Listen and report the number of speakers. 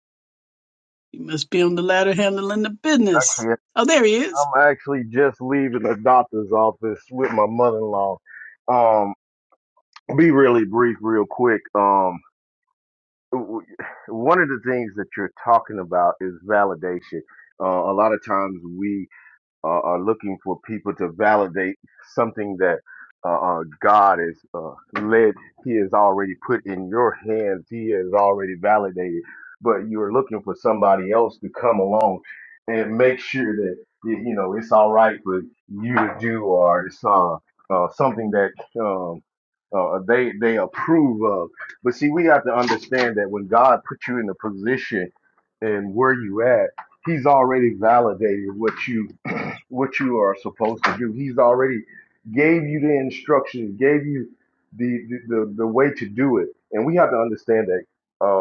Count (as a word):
two